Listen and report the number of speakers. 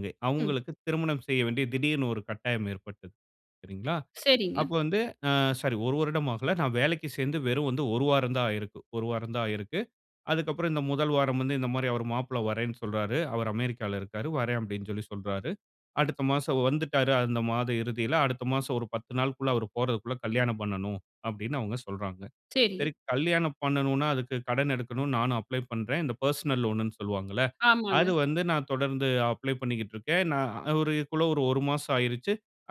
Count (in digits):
2